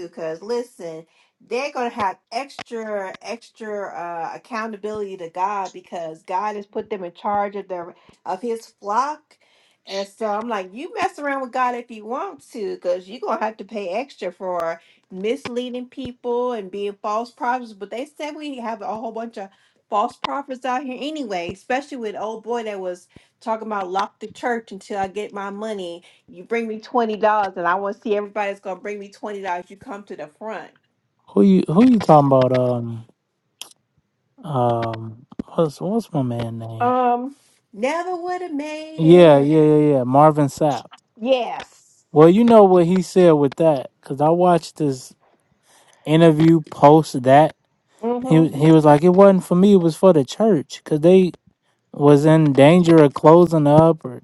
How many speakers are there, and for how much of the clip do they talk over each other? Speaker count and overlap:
two, about 2%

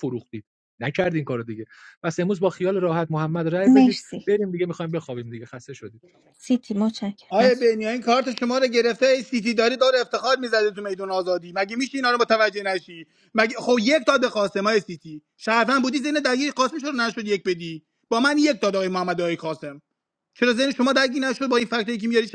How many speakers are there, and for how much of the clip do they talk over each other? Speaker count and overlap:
three, about 2%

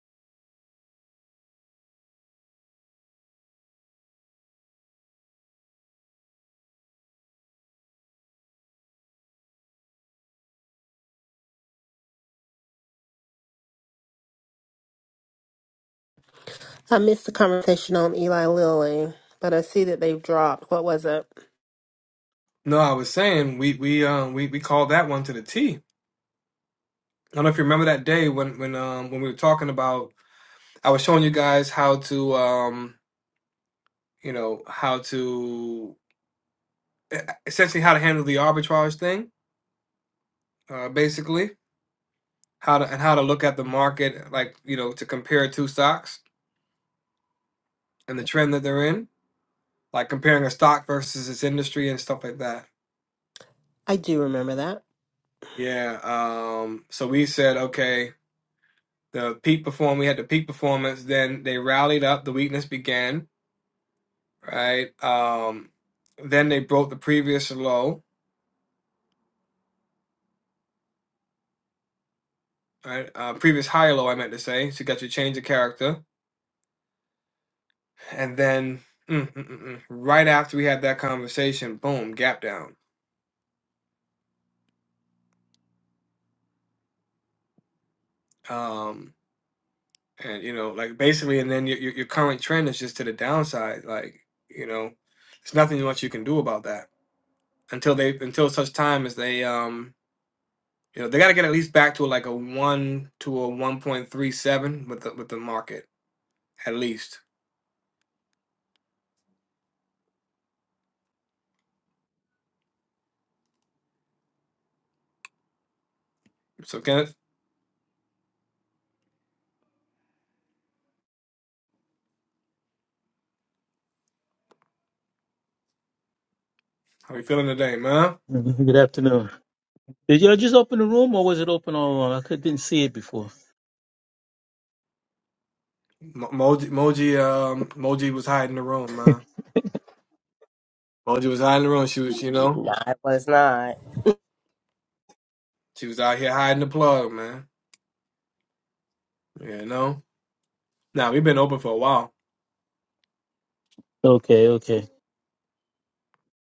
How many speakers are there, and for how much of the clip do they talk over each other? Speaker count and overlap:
four, under 1%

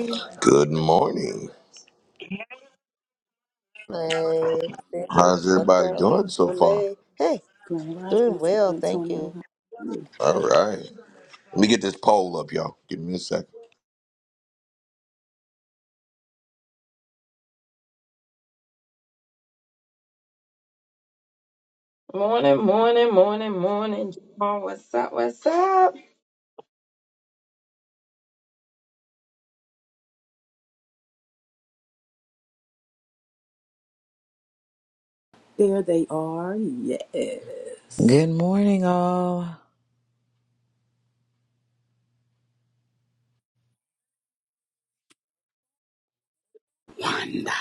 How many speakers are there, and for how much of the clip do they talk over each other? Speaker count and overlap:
five, about 6%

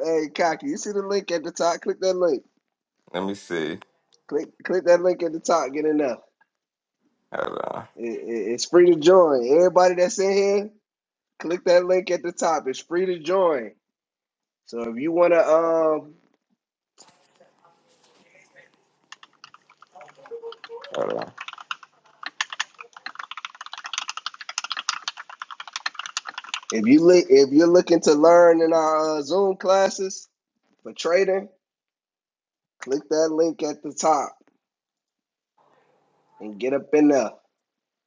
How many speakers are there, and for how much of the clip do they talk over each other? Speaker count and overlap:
two, no overlap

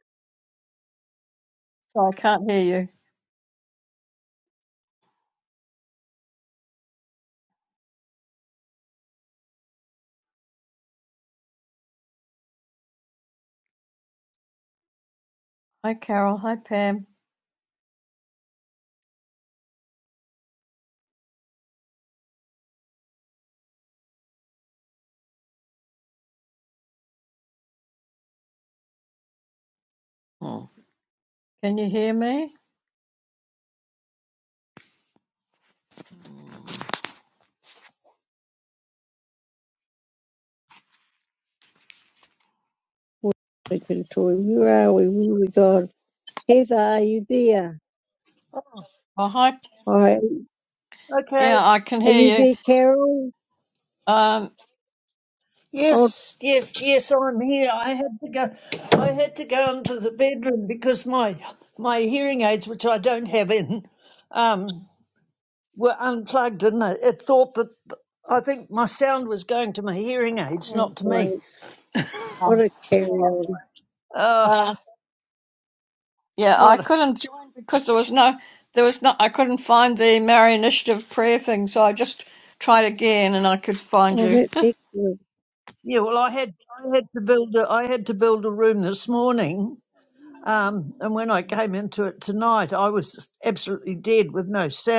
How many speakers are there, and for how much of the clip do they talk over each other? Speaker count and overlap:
three, about 2%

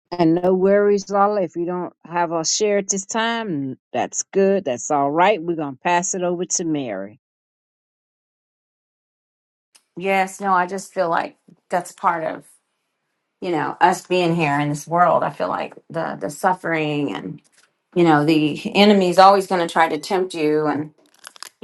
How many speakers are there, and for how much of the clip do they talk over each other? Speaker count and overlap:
two, no overlap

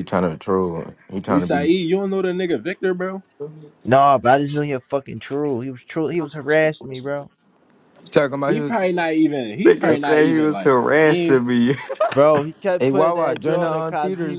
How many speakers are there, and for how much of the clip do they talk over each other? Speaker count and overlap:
four, about 28%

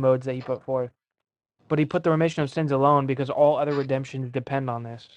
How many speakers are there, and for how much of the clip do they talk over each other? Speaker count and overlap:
one, no overlap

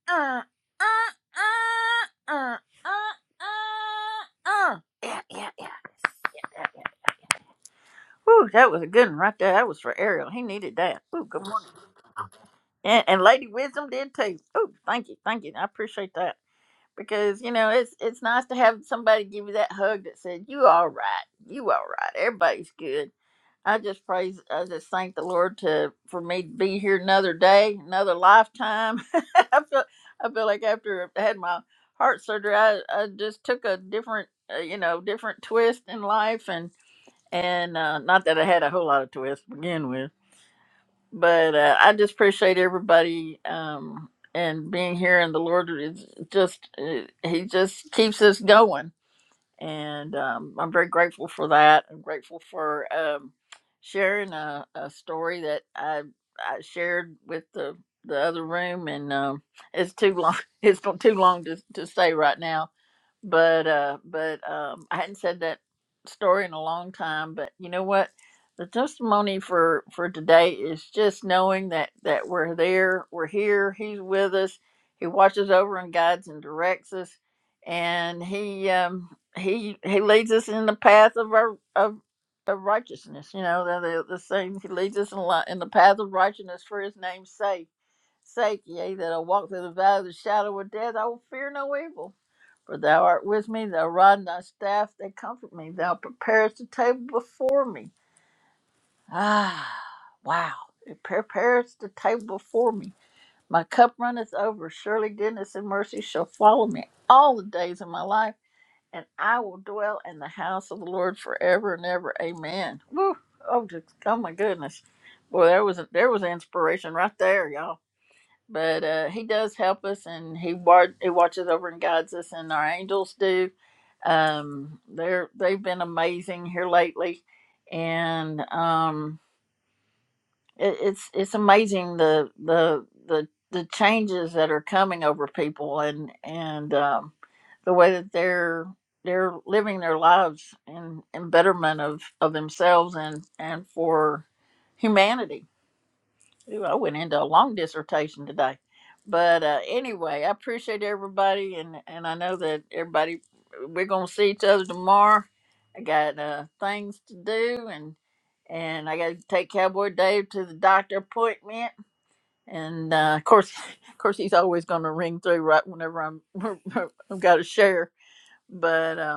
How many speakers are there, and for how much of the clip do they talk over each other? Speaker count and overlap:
one, no overlap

